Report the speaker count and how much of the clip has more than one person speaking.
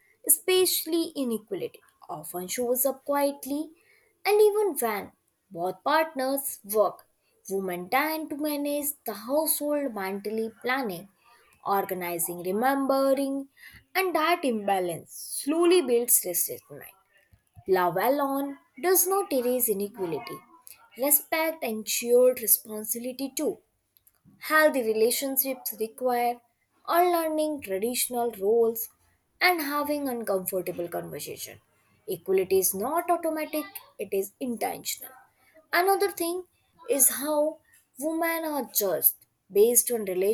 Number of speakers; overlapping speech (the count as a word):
one, no overlap